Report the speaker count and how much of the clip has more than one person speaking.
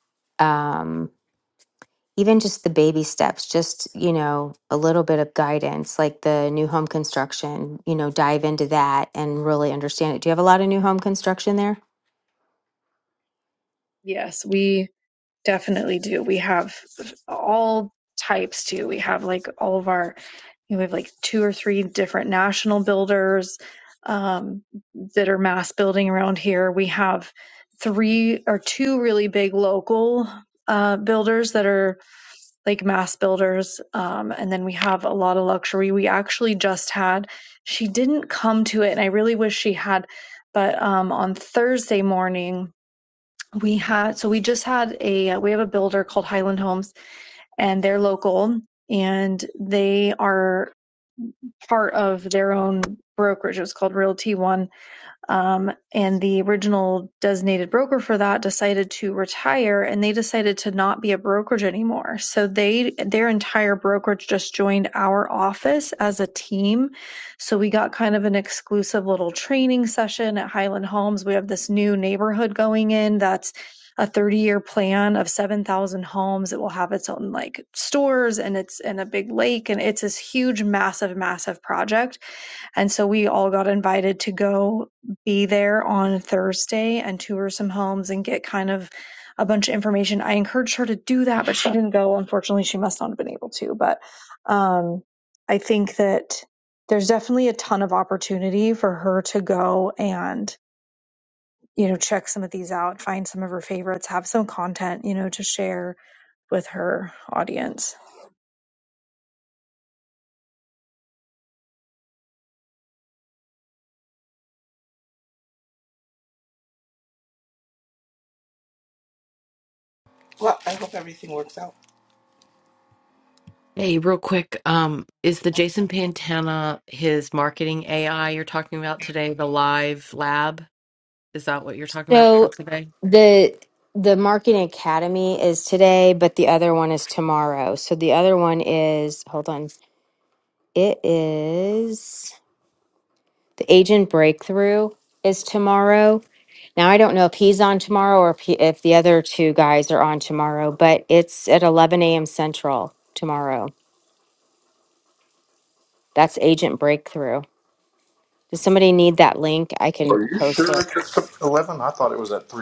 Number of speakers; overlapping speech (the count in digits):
5, about 1%